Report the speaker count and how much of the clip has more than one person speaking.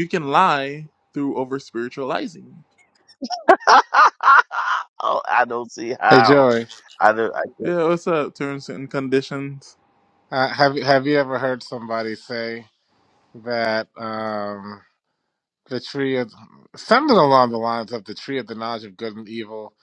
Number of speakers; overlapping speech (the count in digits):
3, about 2%